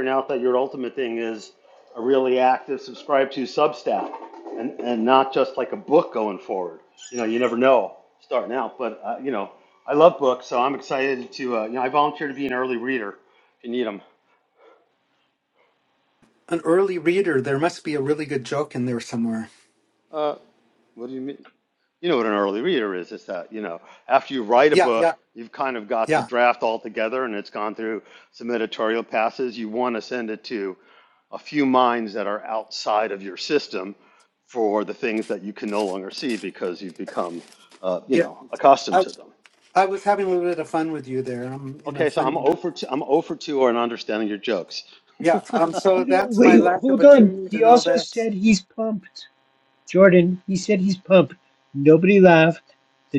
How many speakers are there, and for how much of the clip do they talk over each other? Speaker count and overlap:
3, about 7%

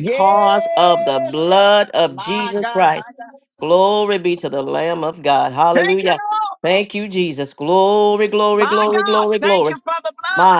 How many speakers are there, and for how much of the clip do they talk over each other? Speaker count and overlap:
2, about 37%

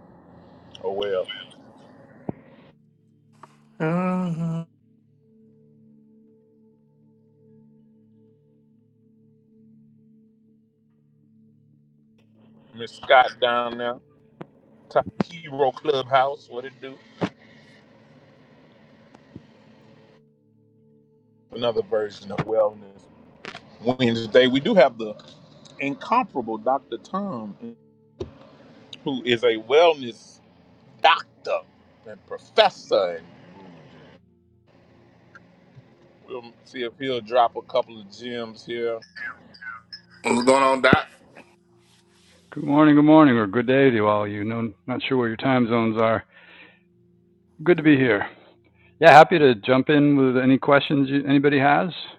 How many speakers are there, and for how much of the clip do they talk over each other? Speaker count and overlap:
3, no overlap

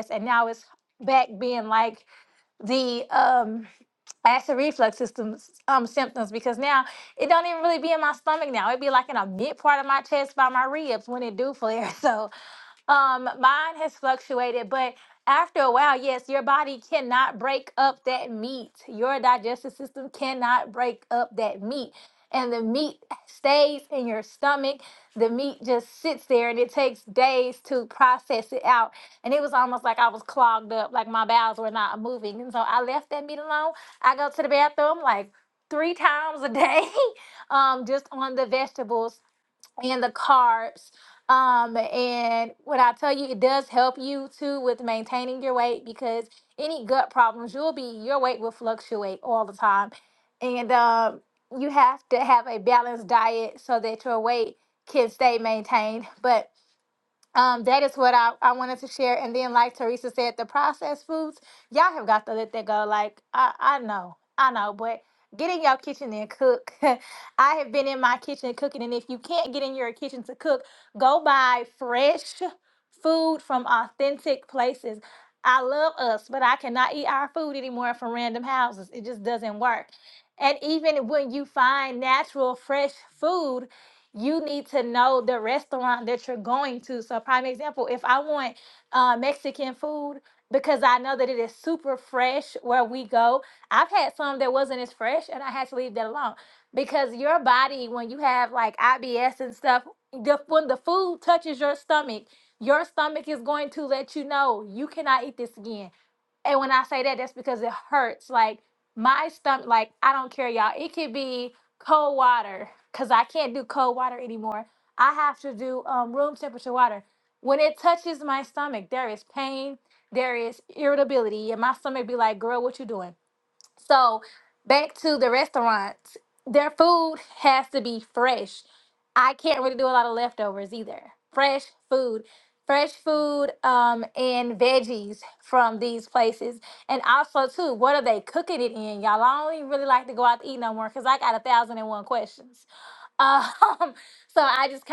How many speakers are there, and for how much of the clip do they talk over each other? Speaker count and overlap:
1, no overlap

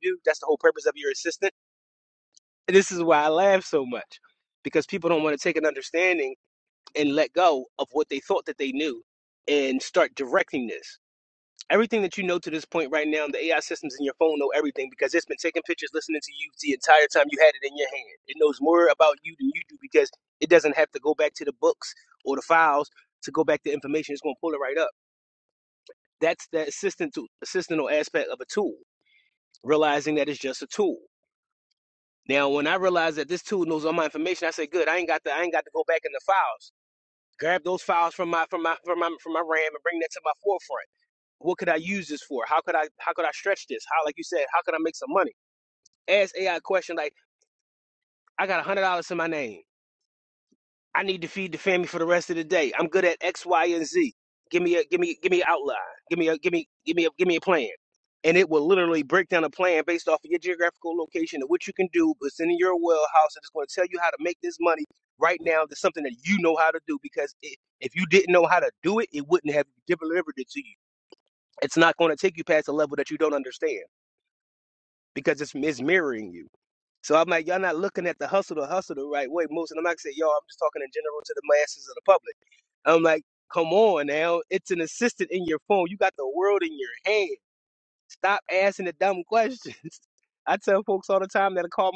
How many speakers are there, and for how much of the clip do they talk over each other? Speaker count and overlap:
1, no overlap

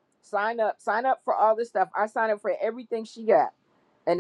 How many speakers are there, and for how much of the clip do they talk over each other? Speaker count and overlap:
1, no overlap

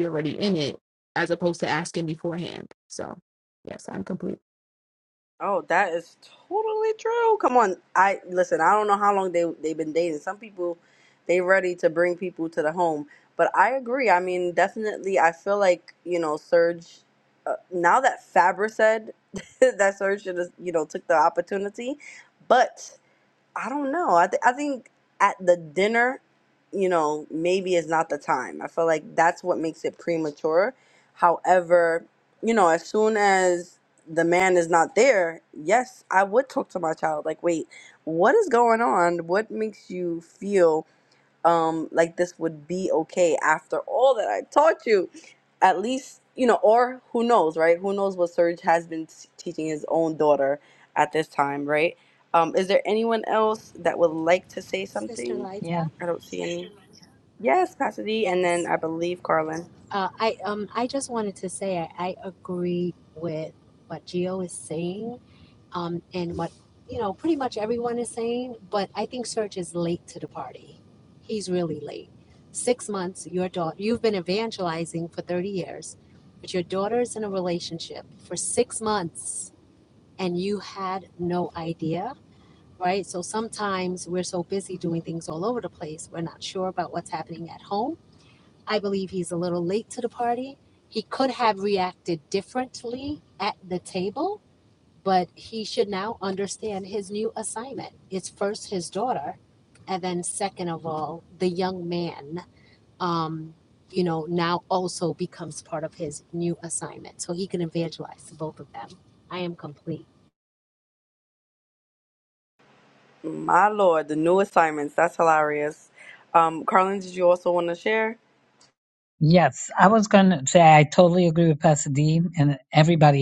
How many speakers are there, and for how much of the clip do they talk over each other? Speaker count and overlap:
4, about 1%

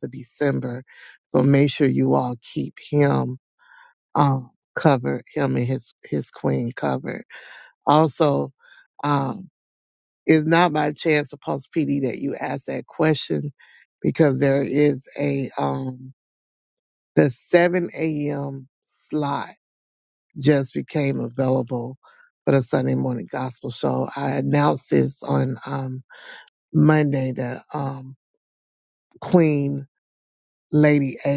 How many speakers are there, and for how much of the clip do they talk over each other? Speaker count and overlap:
1, no overlap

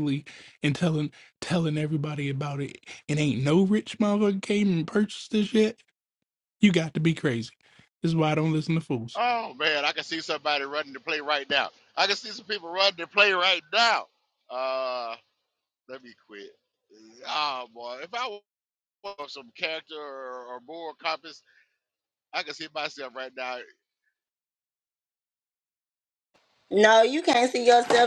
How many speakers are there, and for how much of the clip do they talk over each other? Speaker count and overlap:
3, under 1%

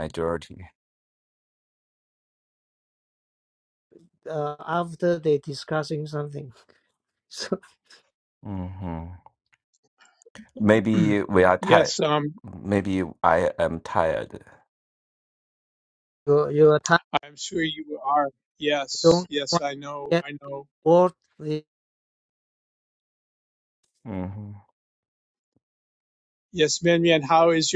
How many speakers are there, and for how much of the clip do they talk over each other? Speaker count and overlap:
3, about 3%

